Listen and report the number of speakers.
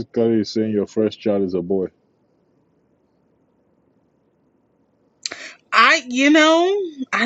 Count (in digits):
2